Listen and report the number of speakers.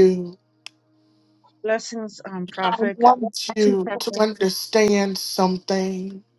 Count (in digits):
2